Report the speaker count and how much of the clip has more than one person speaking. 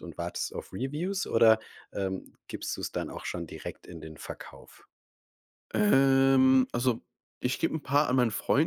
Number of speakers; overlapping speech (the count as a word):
two, no overlap